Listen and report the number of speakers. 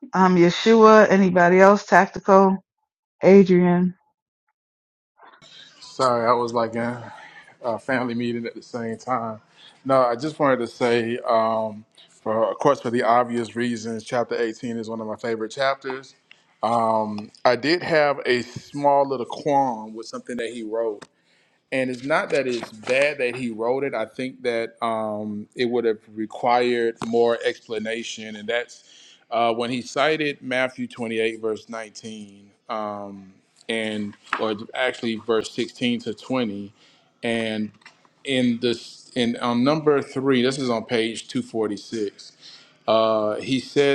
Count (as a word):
two